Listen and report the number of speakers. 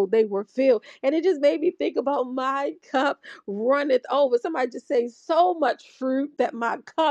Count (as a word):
one